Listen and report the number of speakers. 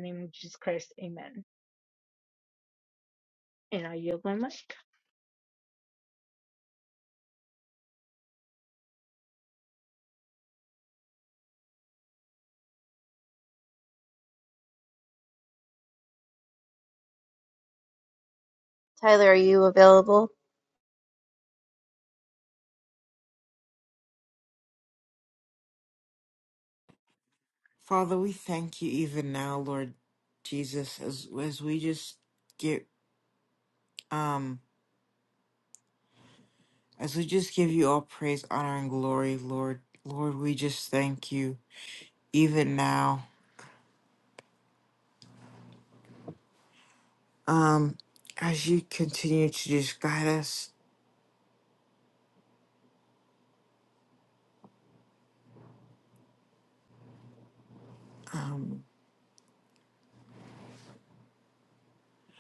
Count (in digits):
3